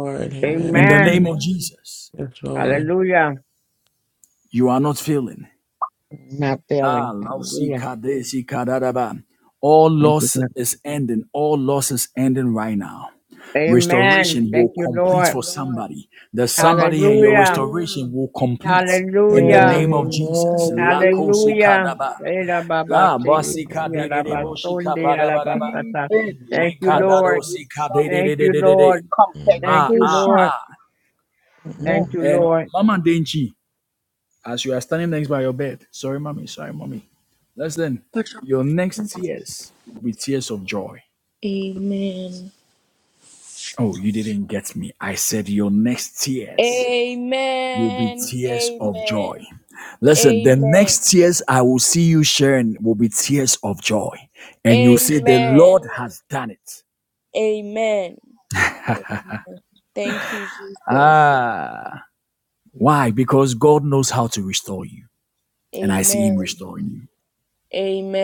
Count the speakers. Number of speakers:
five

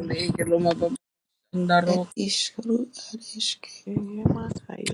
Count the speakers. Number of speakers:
three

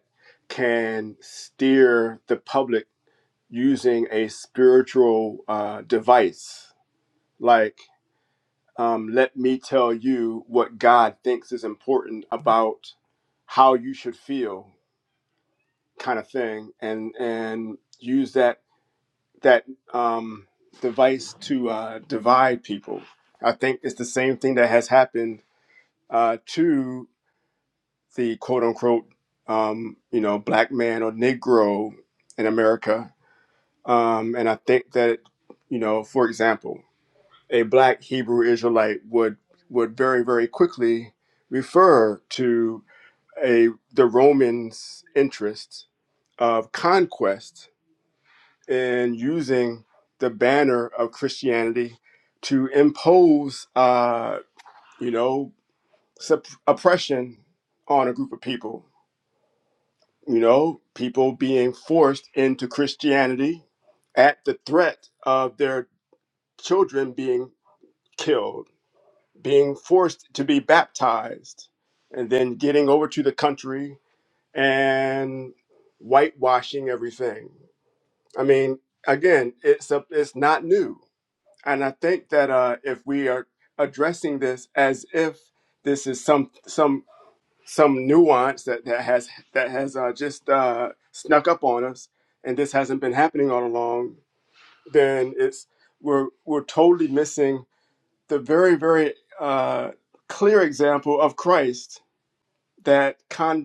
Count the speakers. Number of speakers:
one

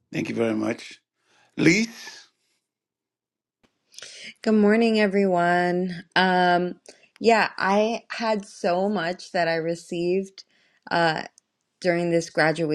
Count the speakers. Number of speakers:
two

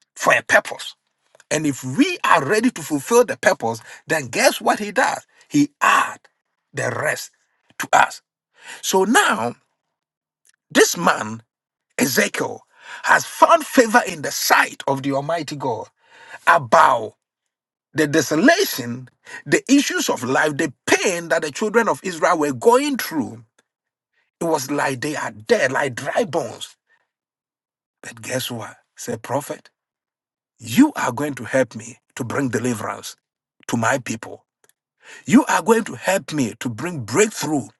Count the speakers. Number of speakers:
one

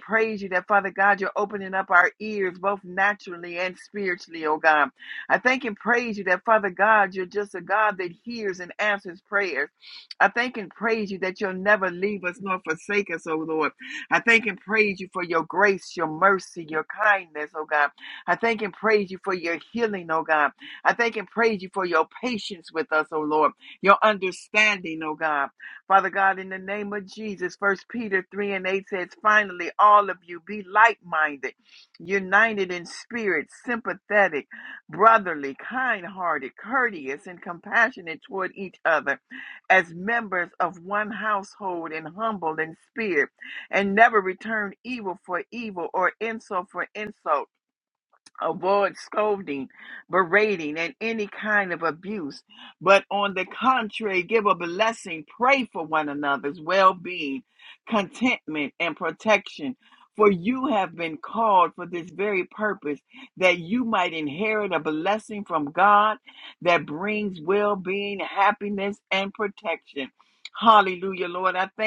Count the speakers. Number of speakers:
one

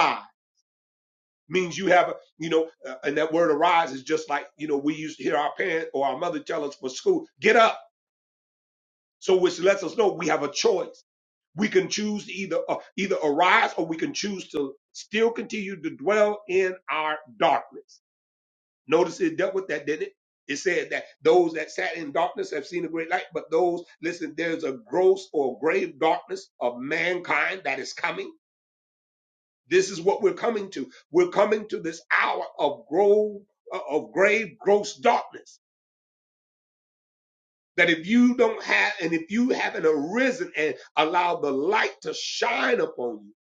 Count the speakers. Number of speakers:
one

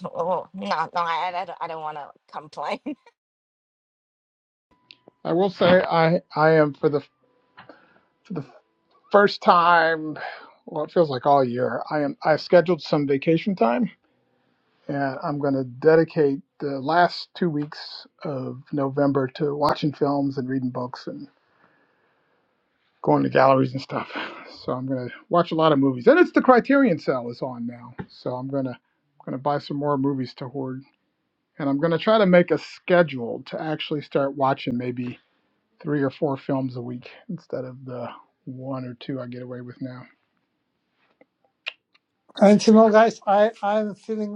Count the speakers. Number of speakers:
three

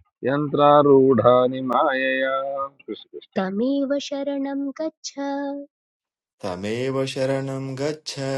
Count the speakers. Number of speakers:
three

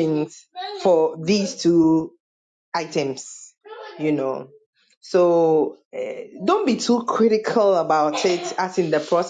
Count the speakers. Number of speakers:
one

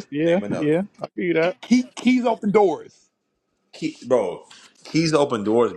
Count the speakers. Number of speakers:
three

